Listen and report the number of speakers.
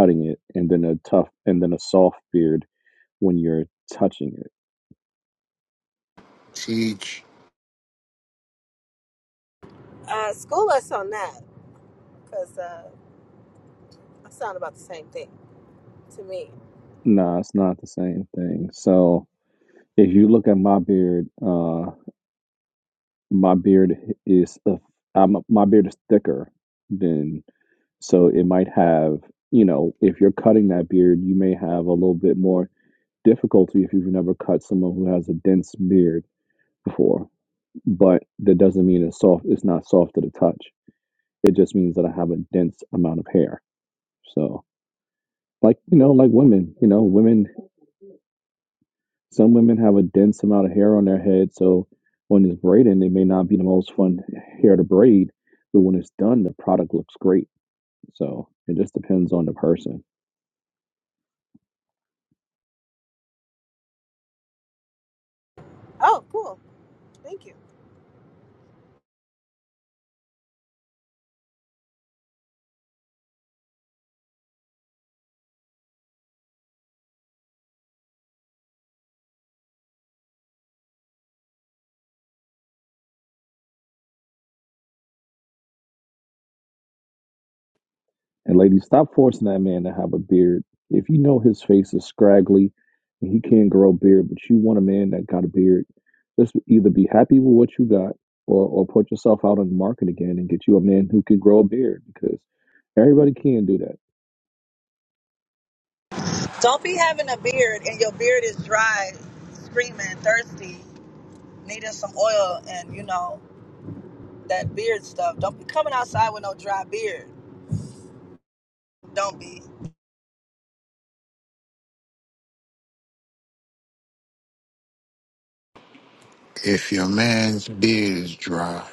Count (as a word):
four